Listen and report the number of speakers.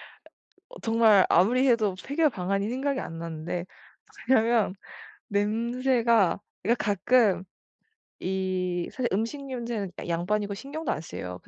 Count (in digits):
1